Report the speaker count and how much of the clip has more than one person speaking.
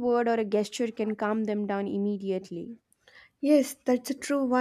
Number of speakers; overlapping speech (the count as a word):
two, no overlap